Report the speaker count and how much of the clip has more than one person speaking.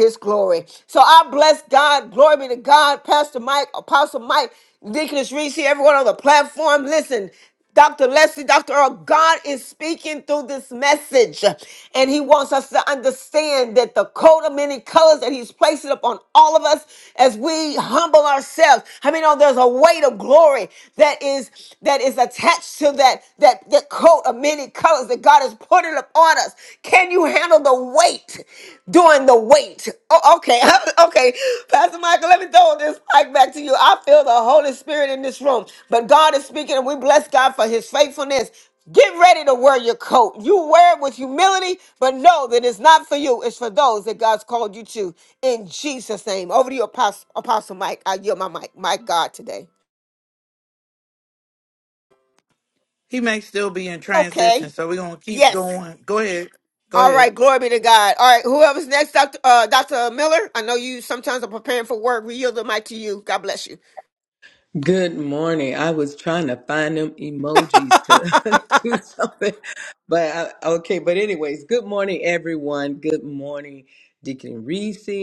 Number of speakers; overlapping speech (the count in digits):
3, about 2%